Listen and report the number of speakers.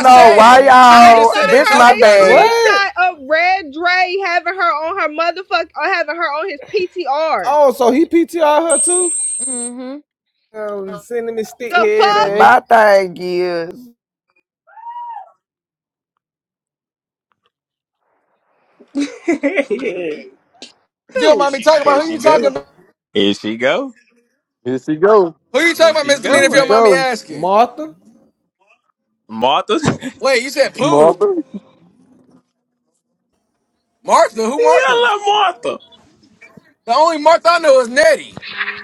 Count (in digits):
7